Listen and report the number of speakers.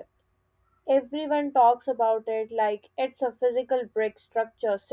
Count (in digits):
1